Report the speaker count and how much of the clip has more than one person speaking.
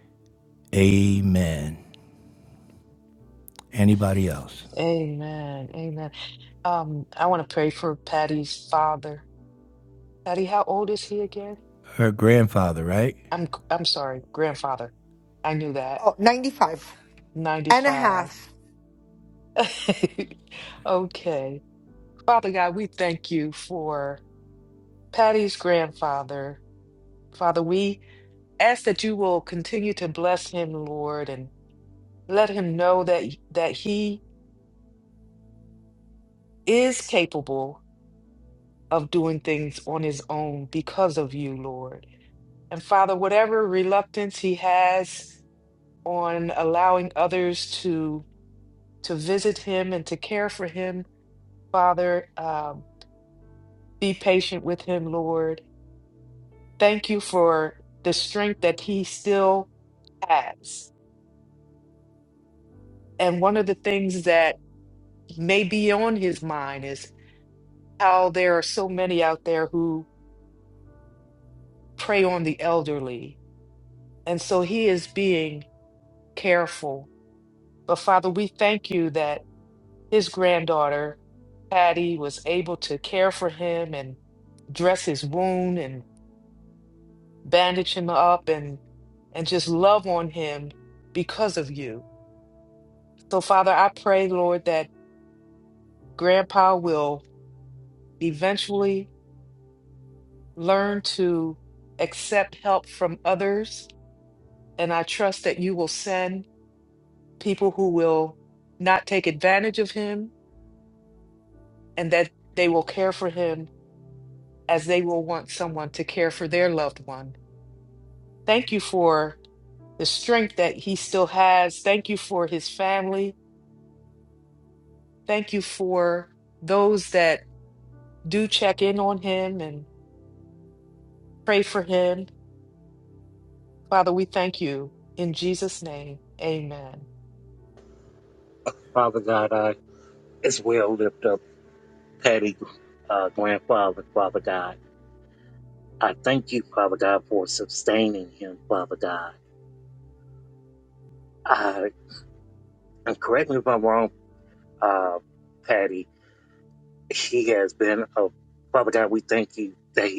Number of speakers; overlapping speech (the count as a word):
four, under 1%